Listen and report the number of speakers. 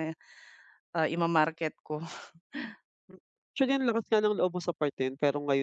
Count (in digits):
2